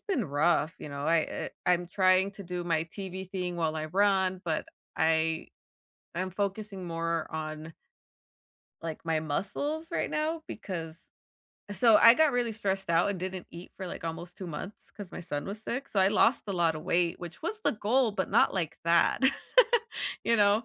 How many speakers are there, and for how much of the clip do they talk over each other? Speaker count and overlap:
one, no overlap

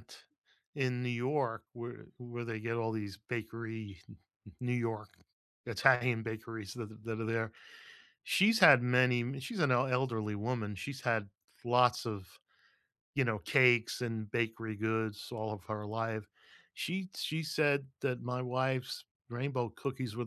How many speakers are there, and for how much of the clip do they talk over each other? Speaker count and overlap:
one, no overlap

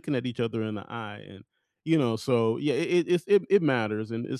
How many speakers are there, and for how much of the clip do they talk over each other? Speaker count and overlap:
one, no overlap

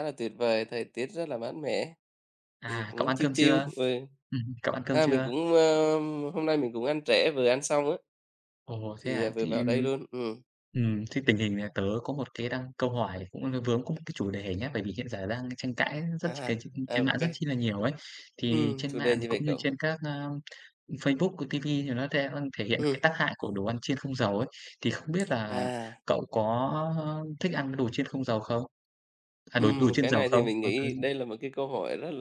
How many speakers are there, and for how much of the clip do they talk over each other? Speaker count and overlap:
two, about 16%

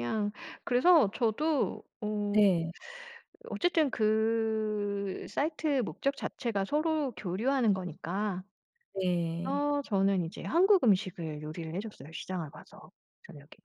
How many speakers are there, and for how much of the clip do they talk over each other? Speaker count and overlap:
two, about 1%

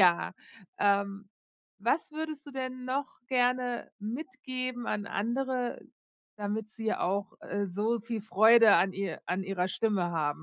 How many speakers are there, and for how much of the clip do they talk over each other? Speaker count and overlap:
one, no overlap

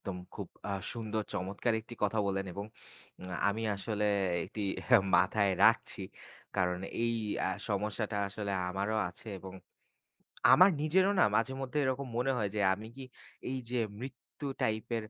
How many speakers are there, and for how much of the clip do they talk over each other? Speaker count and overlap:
one, no overlap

